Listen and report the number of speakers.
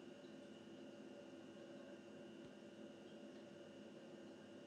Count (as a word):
zero